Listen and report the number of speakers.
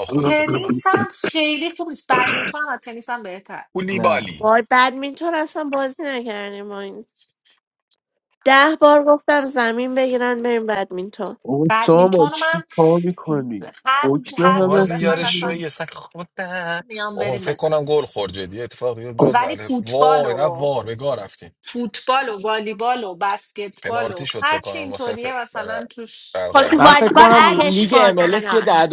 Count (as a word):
five